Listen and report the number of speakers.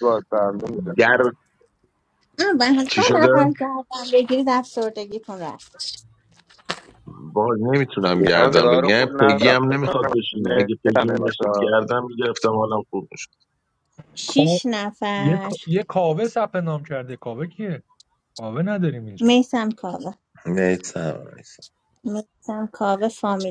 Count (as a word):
four